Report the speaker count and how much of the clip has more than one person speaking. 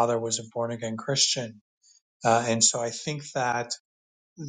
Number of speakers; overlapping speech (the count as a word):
one, no overlap